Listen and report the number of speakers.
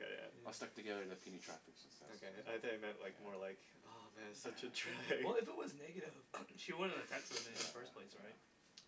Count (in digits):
3